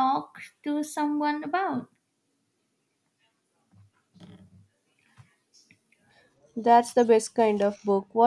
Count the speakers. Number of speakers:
two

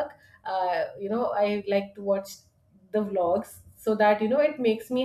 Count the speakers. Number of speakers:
one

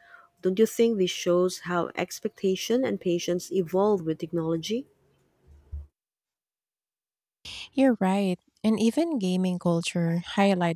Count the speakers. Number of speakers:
two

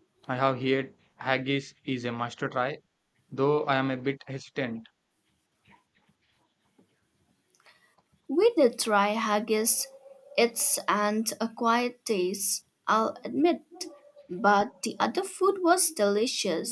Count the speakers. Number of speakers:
two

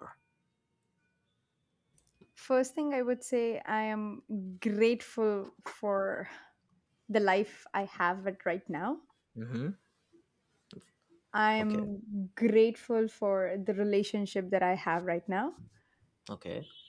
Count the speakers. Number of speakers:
two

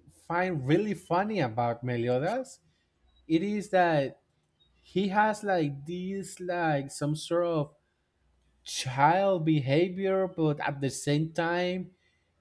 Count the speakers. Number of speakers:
one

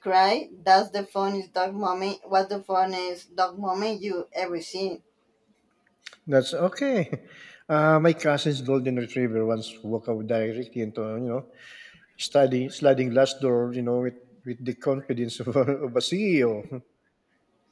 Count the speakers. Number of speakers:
two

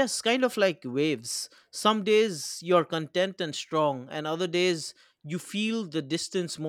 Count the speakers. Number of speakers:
one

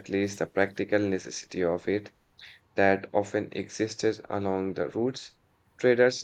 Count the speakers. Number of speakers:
one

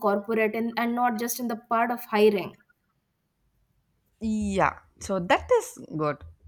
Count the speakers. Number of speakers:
two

